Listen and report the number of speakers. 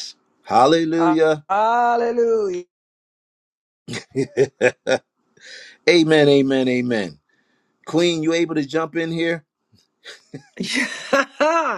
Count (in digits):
3